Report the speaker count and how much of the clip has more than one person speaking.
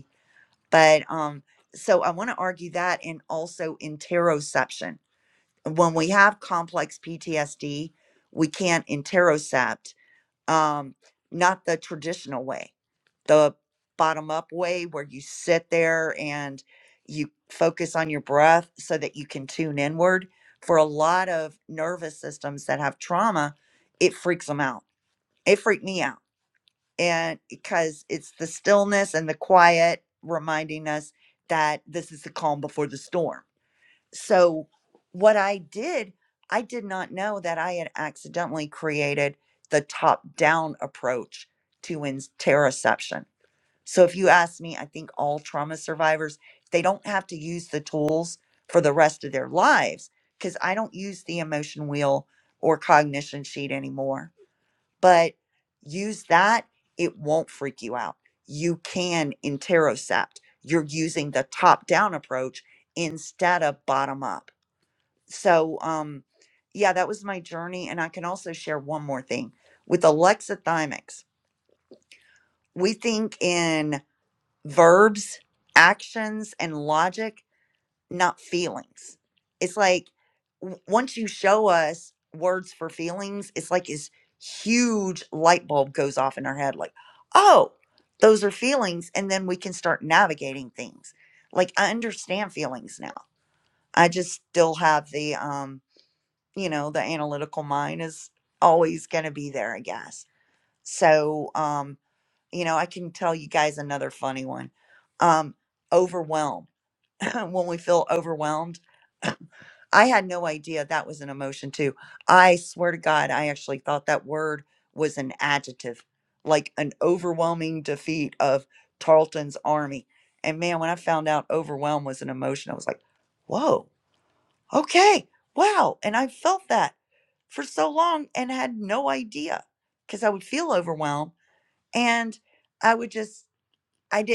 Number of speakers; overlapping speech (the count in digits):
1, no overlap